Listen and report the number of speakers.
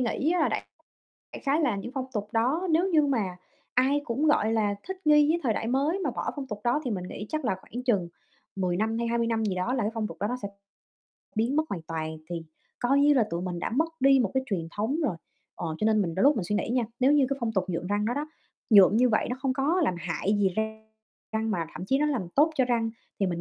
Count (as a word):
one